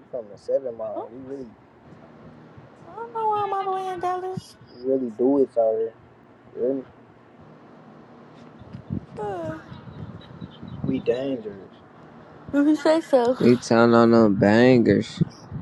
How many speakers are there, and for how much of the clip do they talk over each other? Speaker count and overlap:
three, about 1%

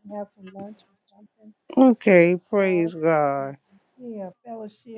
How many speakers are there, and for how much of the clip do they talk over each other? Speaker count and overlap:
two, about 9%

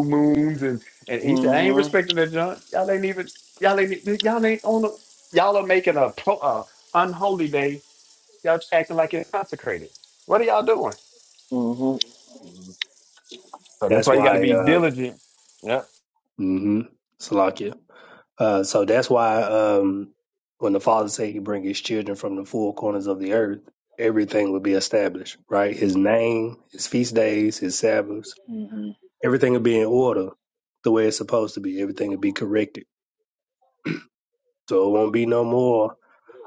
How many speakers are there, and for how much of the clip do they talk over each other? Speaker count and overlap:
three, about 5%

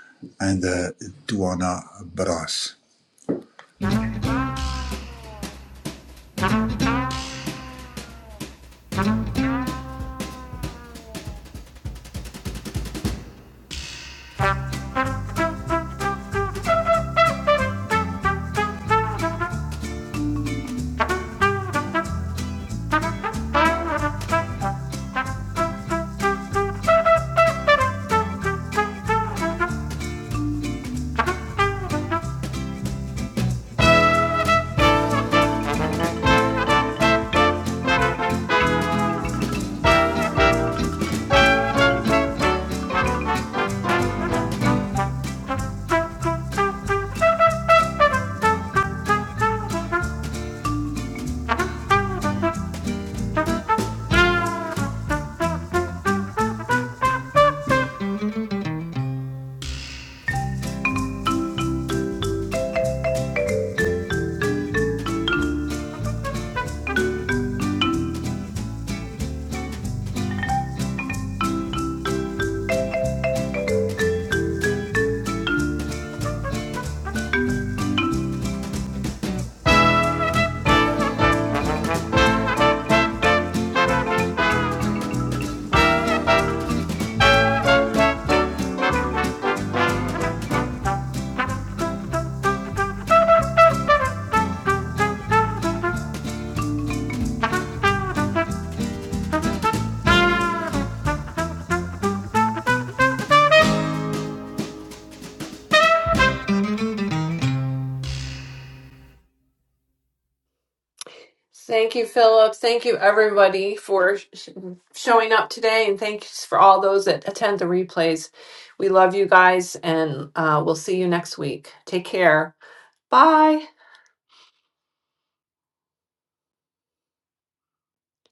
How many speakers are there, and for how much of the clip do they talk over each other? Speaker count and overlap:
two, no overlap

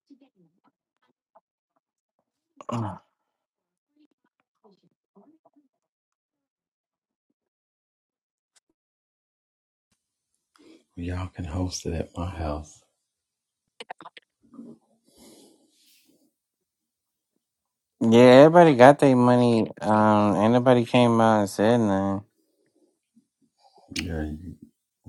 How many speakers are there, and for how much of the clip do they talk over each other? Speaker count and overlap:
two, no overlap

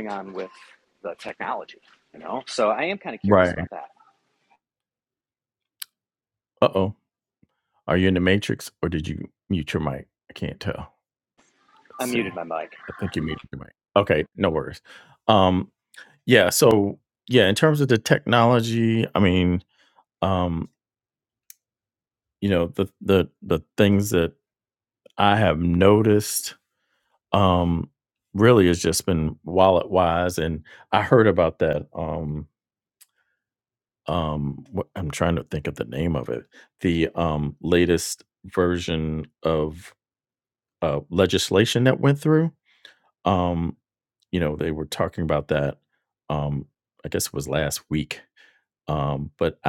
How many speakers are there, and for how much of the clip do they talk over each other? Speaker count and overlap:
two, about 1%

